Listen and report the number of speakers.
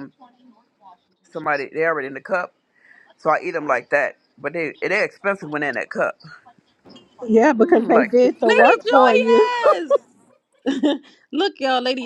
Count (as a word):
three